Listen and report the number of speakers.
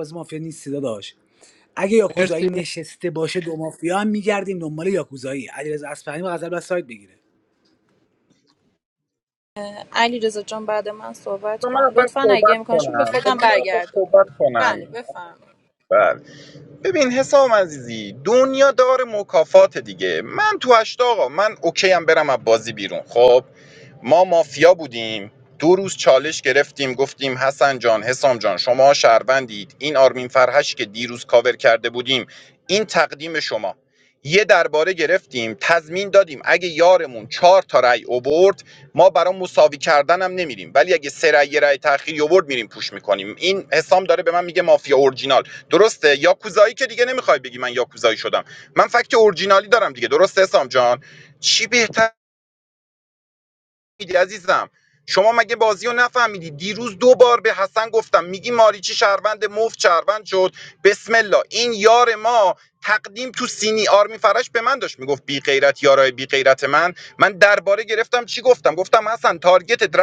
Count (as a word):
three